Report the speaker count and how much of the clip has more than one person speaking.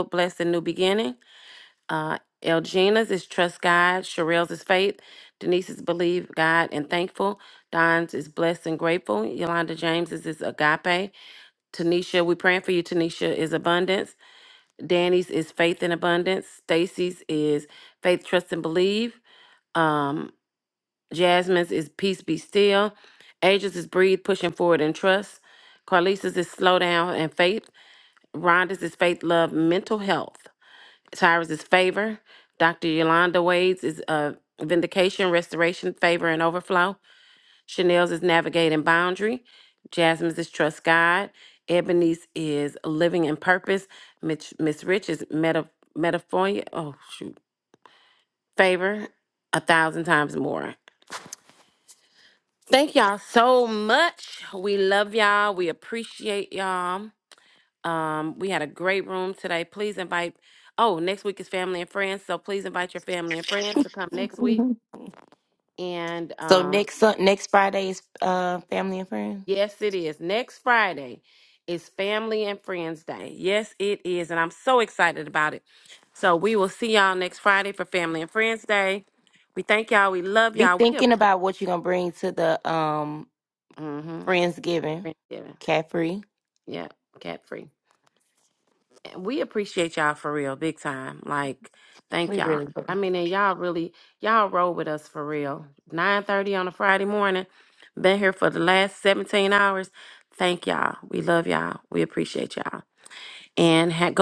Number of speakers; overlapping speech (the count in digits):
2, about 2%